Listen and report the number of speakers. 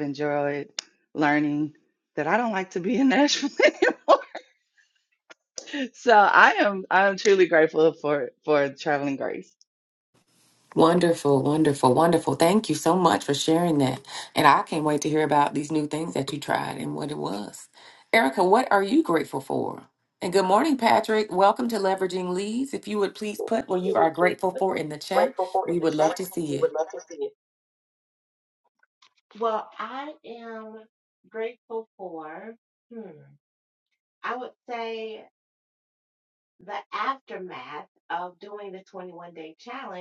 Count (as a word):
three